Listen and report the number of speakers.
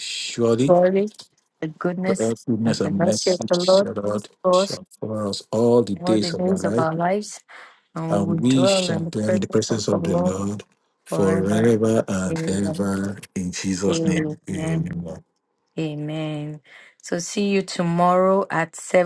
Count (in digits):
2